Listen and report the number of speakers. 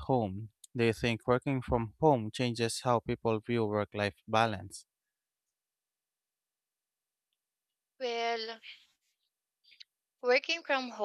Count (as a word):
two